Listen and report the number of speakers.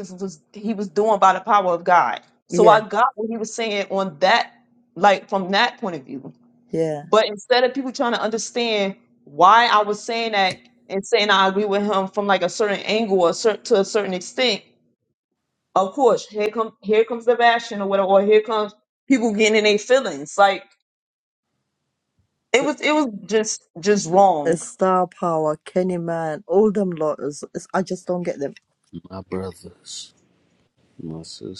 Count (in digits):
3